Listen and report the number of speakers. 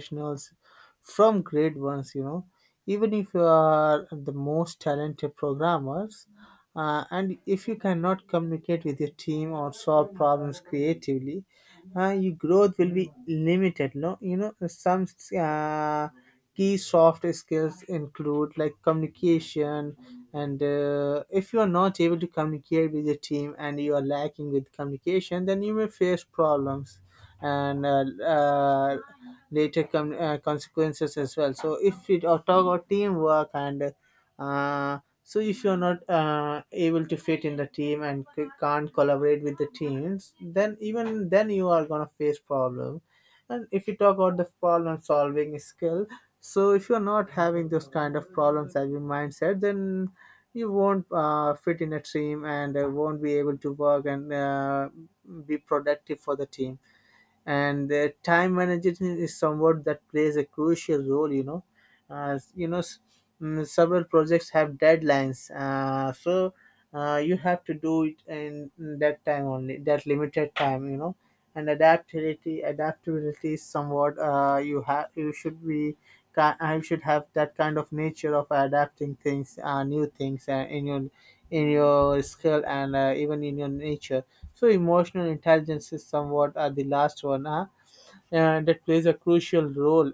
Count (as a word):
one